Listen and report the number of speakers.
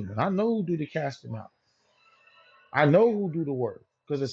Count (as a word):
one